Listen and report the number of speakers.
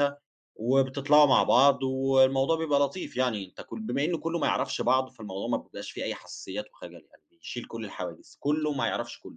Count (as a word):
one